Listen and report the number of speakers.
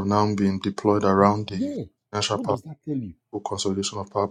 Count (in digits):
2